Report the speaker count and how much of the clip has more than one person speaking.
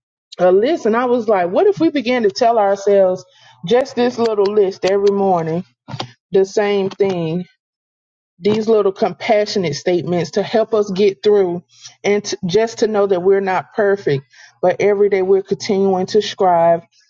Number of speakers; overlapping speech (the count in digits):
1, no overlap